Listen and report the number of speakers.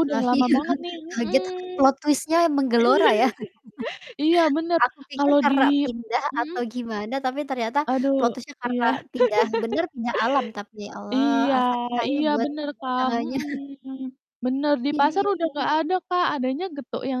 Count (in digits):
2